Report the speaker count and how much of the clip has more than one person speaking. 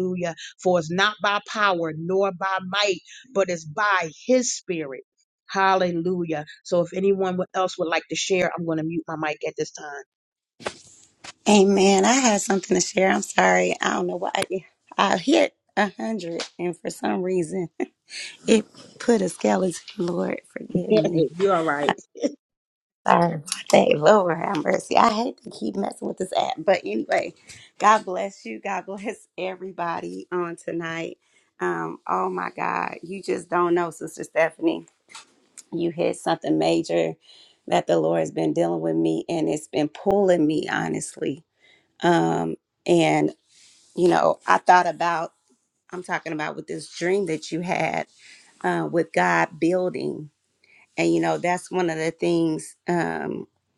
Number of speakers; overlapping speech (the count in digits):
2, no overlap